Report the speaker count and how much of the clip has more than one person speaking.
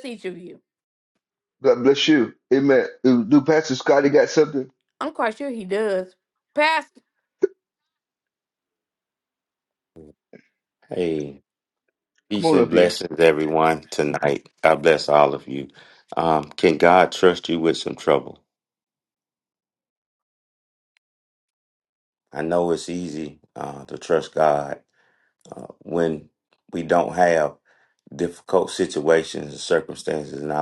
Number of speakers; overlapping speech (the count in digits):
3, about 2%